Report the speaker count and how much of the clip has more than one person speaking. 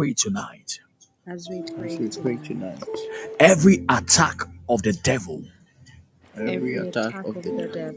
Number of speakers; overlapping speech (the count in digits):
3, about 29%